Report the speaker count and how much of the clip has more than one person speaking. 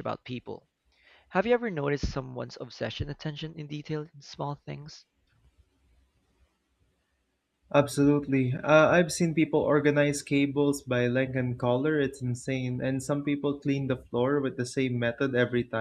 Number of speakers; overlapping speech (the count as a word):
two, no overlap